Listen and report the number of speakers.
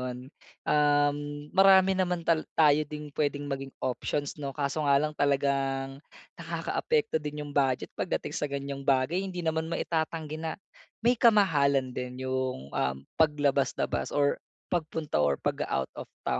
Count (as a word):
one